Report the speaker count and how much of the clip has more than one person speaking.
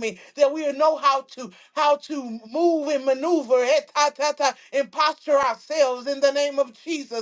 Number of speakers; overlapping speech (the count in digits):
1, no overlap